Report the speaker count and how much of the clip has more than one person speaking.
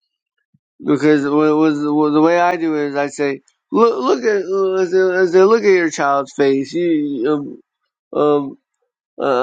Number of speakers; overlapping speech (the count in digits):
1, no overlap